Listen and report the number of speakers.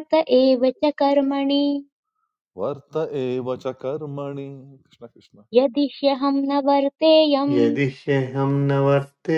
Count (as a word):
three